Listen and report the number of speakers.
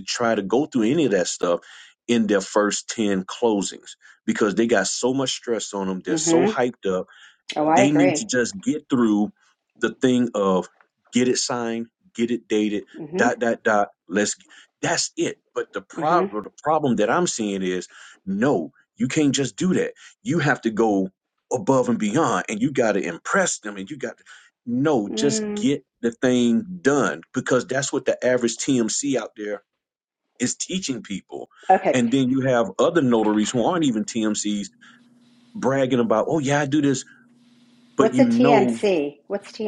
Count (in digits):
2